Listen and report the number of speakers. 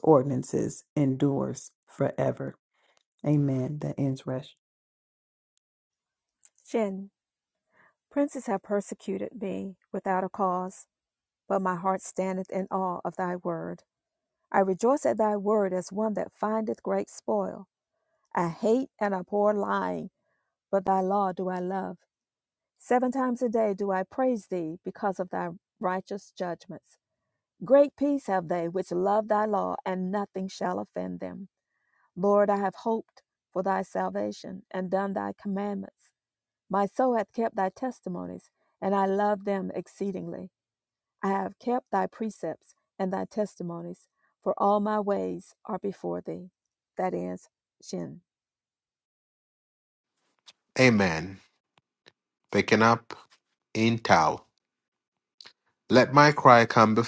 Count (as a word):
three